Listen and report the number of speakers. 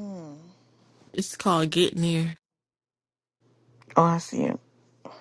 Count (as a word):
two